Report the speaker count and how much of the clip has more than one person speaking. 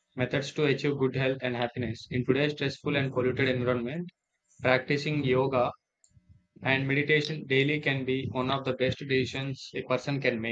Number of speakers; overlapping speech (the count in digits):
1, no overlap